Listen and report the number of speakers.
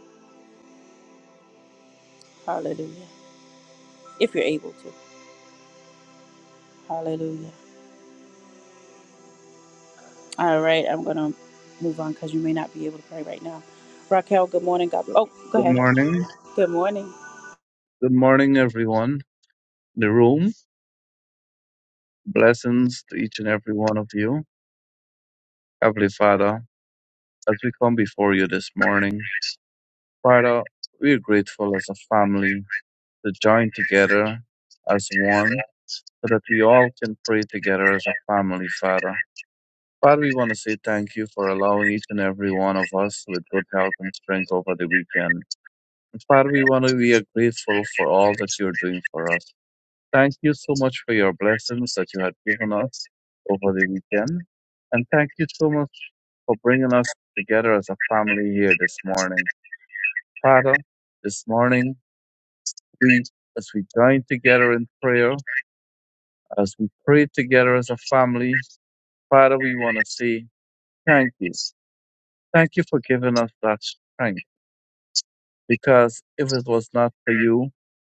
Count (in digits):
2